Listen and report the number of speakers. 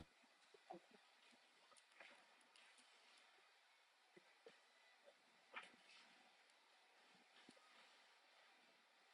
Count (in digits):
0